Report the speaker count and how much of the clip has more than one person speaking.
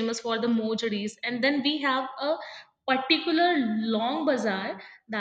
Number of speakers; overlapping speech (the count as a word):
one, no overlap